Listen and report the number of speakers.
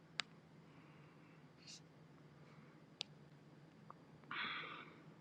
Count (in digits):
0